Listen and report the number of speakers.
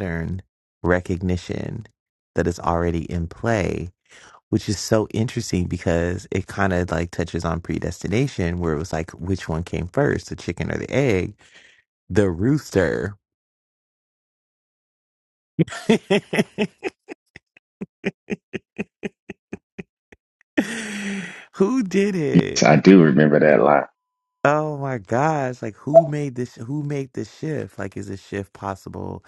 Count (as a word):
two